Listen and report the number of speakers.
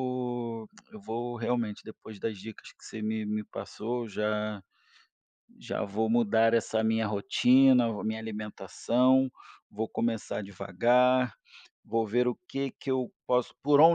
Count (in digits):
1